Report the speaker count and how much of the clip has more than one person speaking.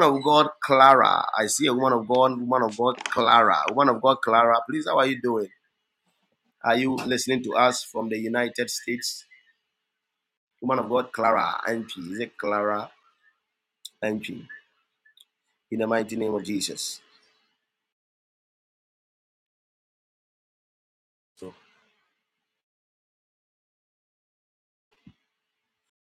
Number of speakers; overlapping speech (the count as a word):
one, no overlap